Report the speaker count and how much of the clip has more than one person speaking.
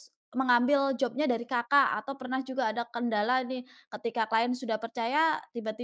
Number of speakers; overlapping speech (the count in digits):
1, no overlap